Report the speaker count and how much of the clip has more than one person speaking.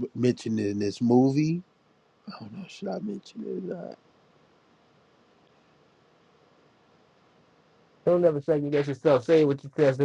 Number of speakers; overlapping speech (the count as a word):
two, no overlap